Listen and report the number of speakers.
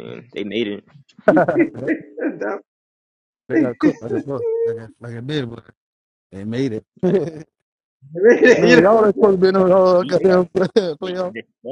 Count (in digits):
3